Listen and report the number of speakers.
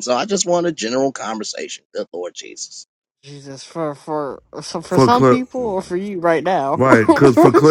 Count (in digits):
3